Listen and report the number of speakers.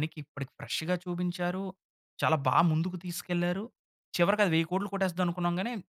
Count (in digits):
1